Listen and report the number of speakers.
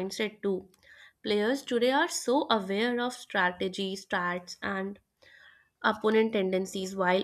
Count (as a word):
one